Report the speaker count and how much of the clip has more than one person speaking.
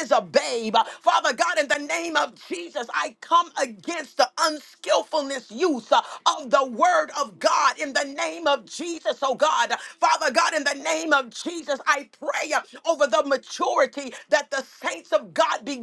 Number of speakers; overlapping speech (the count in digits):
1, no overlap